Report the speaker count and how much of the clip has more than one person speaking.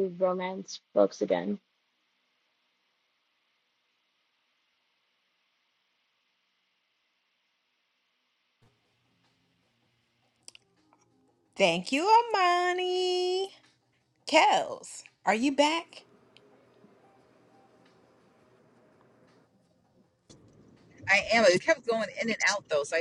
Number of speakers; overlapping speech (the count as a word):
three, no overlap